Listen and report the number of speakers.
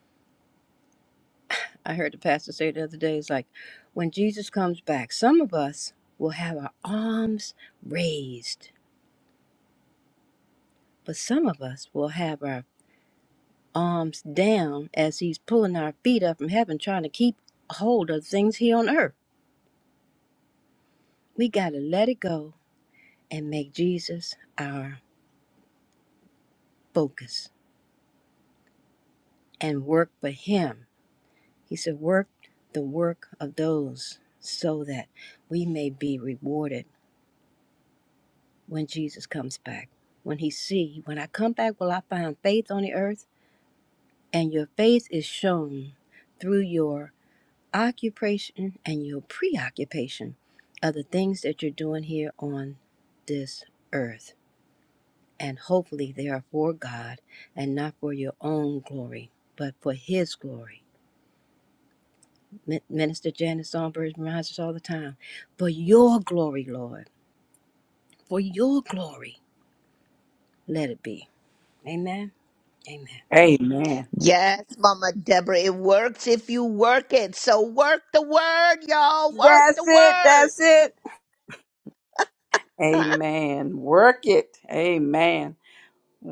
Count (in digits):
3